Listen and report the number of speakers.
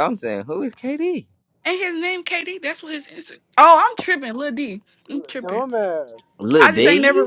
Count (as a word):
three